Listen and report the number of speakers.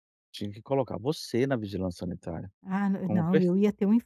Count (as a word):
two